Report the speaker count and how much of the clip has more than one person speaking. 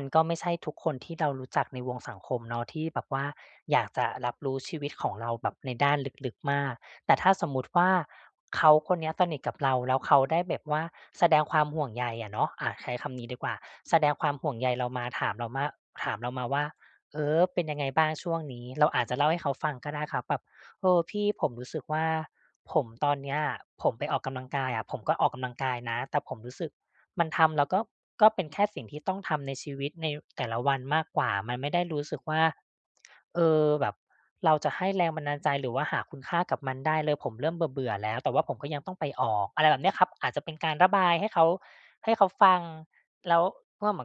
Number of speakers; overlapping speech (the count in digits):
1, no overlap